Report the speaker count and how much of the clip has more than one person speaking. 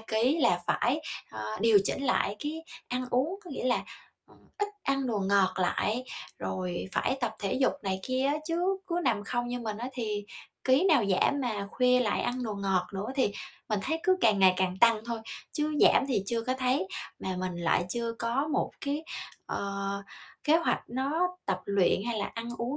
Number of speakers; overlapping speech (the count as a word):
one, no overlap